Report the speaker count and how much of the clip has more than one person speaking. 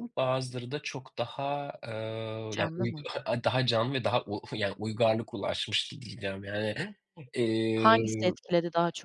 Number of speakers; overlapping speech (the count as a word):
two, about 11%